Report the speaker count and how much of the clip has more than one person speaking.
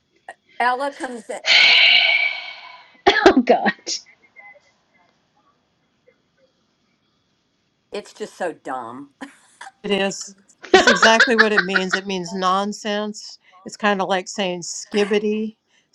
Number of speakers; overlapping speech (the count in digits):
3, about 3%